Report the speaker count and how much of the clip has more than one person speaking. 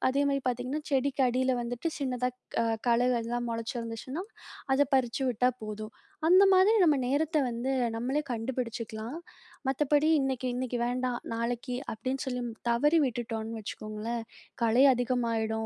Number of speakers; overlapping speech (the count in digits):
1, no overlap